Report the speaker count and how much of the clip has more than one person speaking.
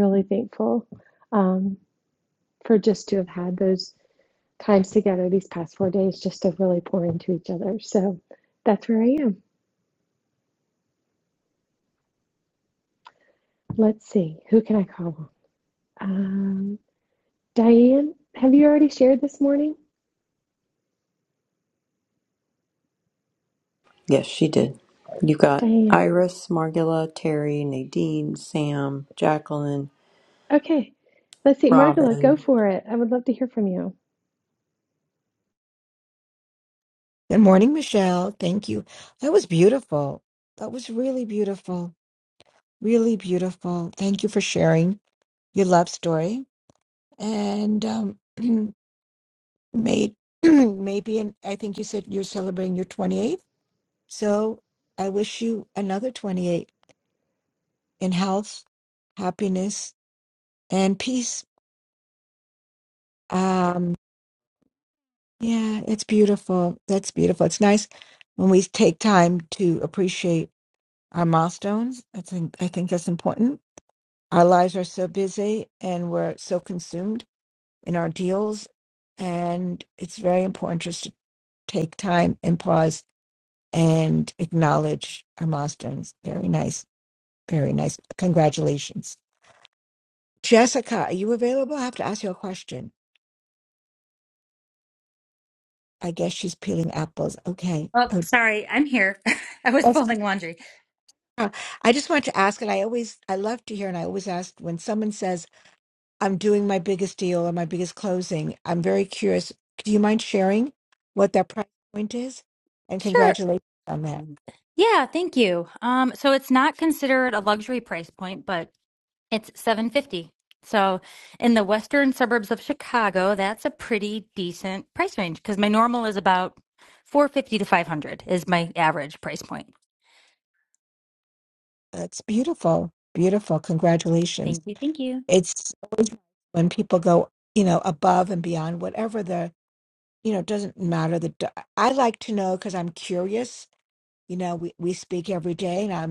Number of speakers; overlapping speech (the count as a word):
four, about 1%